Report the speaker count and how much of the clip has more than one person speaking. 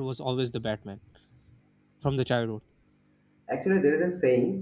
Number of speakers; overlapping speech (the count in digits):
2, no overlap